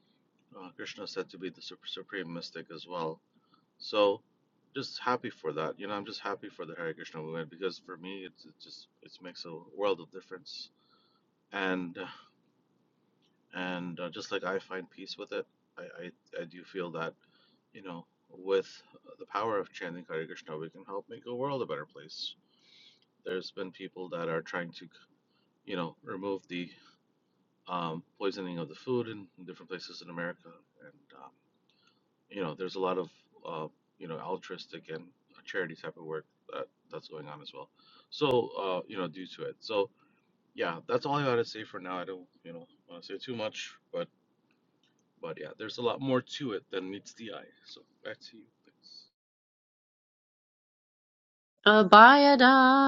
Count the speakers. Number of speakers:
2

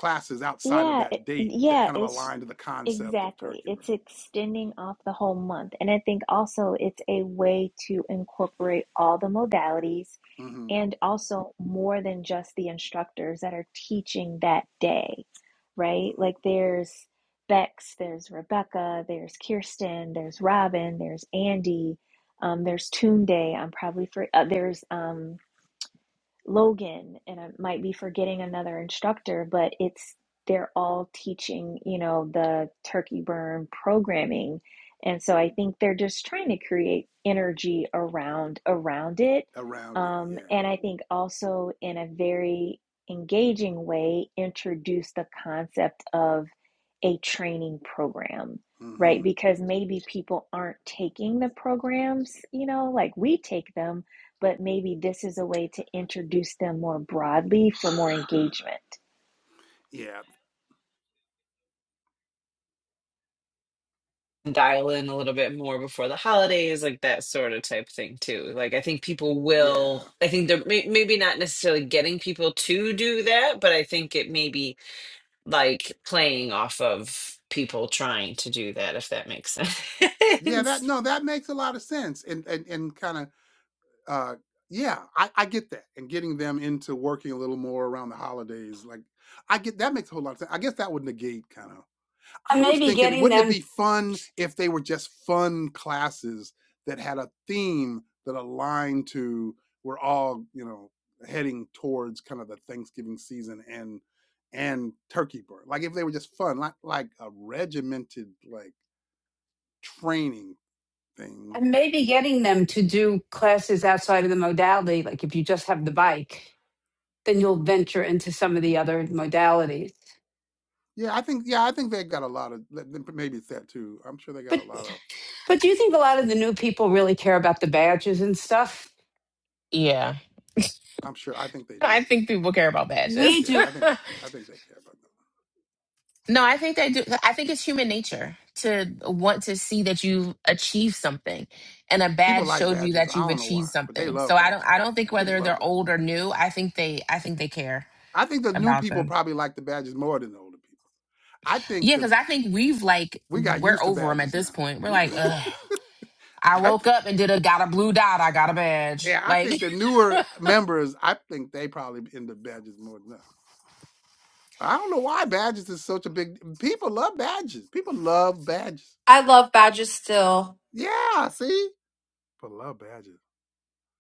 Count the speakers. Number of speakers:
6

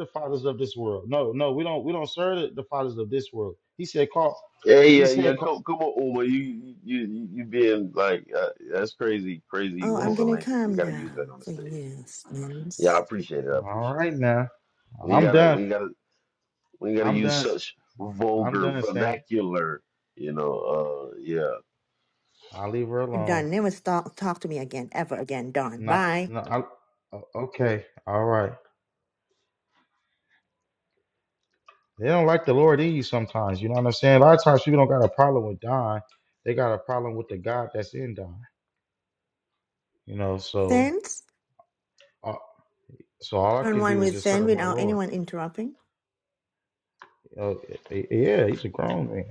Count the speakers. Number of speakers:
3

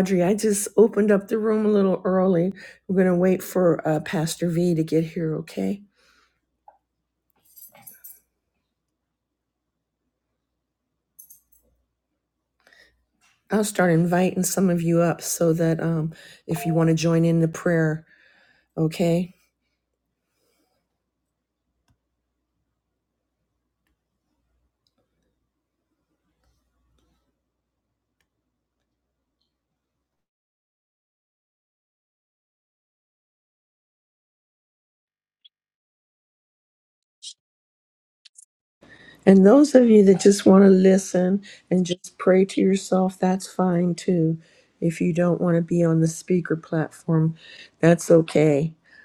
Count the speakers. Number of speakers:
1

